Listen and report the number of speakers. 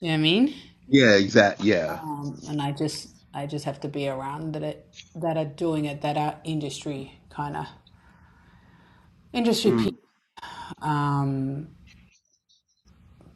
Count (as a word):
two